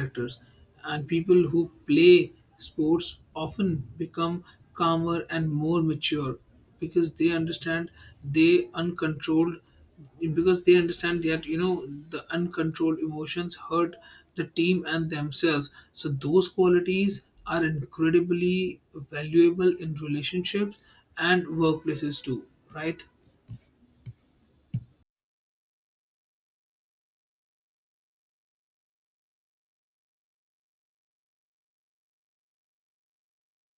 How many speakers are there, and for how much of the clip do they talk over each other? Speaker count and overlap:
1, no overlap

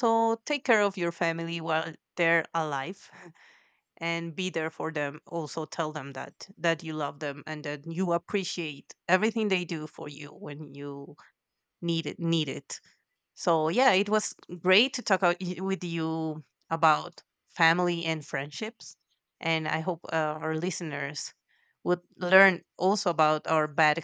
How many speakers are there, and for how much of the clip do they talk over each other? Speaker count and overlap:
1, no overlap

